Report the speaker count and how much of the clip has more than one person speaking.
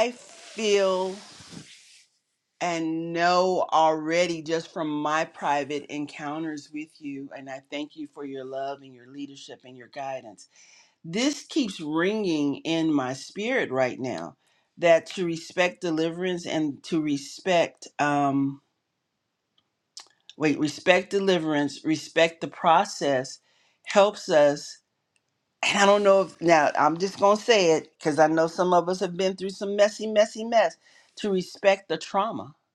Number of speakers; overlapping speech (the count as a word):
one, no overlap